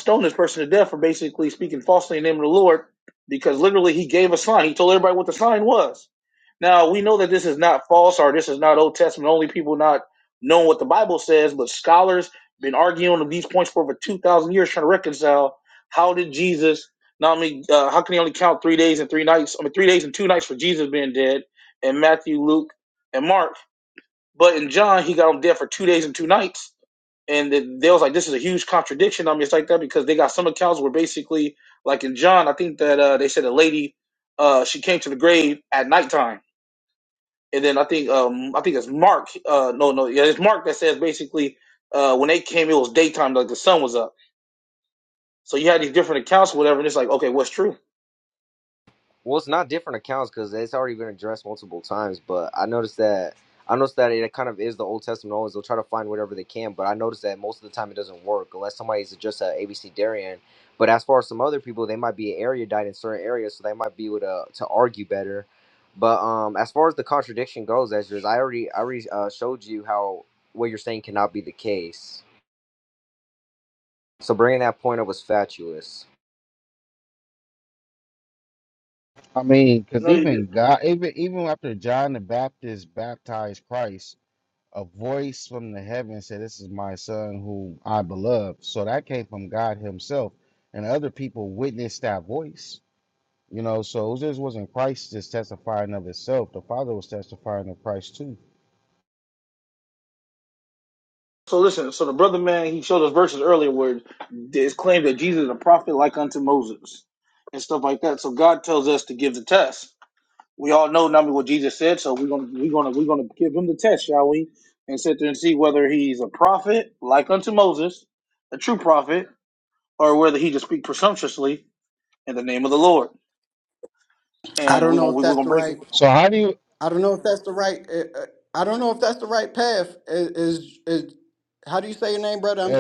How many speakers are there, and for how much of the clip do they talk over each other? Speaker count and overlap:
4, about 1%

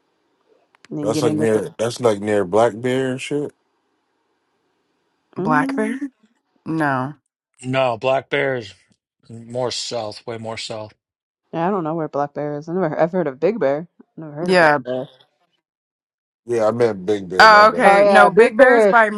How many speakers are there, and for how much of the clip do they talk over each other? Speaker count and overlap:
4, about 17%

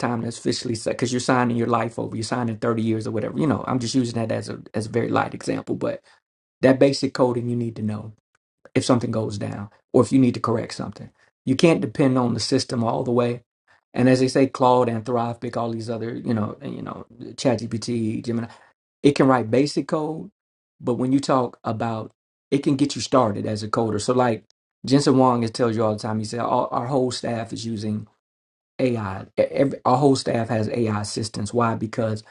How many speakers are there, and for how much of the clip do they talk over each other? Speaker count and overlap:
1, no overlap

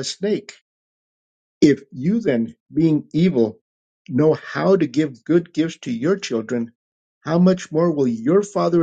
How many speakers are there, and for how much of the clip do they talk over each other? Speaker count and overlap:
1, no overlap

